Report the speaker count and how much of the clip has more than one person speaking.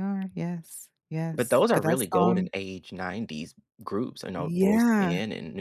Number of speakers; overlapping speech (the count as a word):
two, about 35%